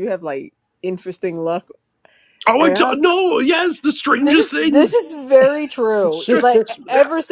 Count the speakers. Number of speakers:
3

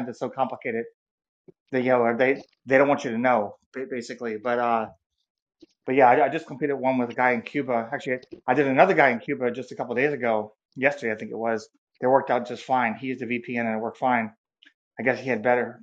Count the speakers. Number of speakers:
1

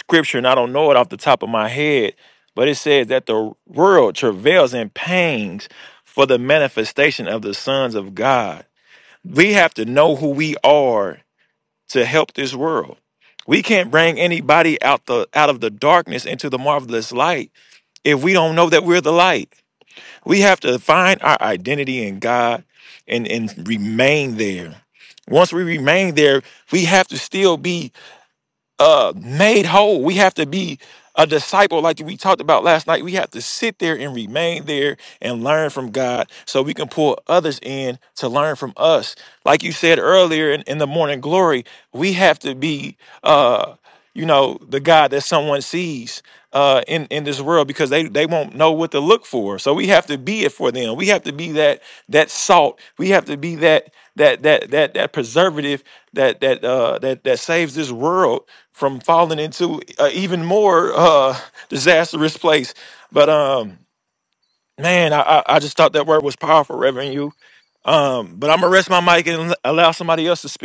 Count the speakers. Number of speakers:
1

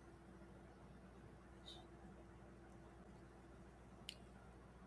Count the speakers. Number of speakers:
0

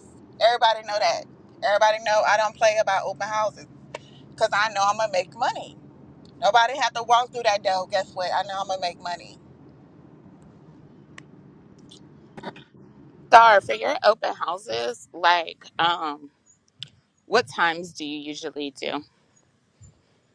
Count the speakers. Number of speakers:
2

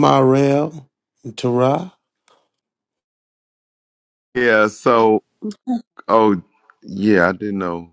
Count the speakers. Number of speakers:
2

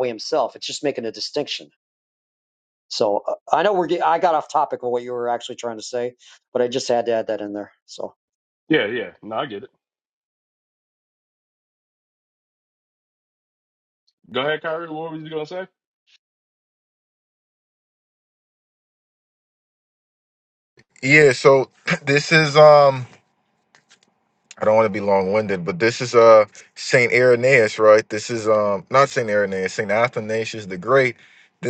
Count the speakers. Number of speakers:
3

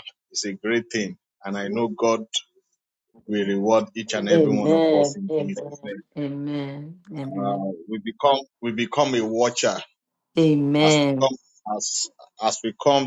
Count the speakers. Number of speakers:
2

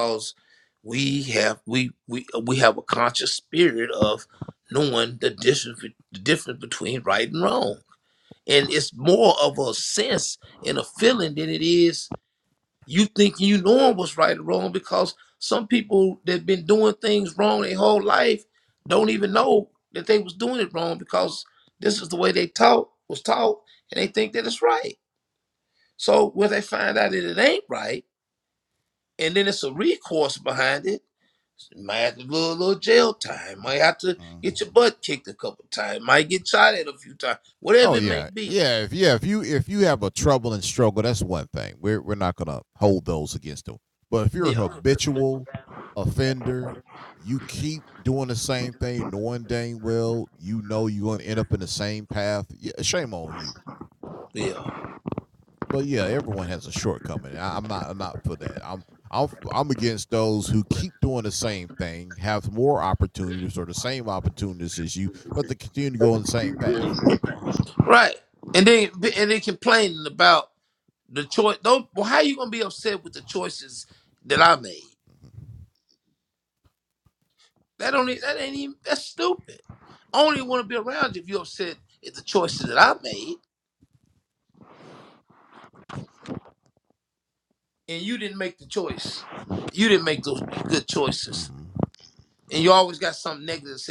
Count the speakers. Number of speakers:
2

